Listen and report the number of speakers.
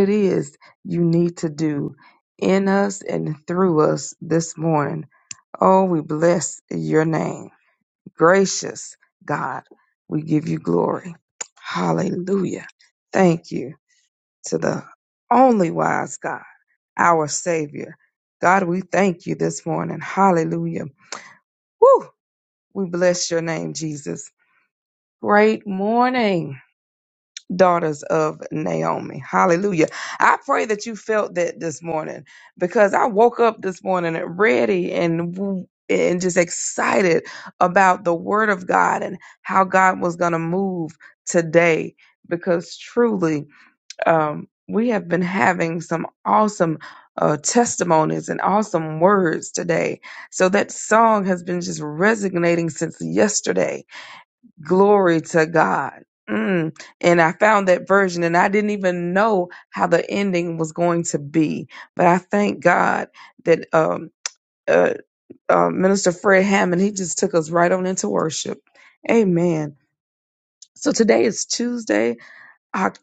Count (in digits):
1